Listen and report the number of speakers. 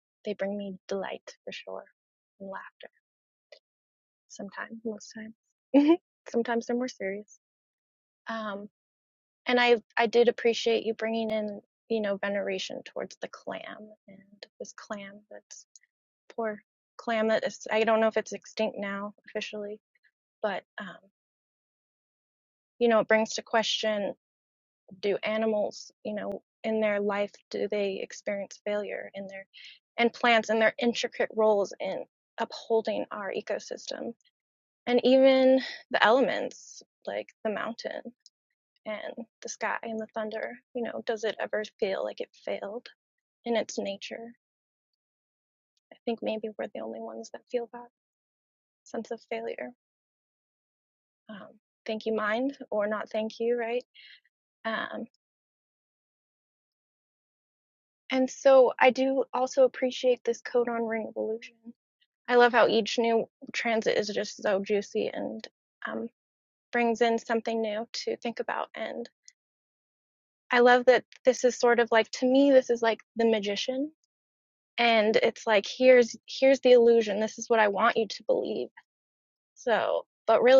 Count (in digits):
1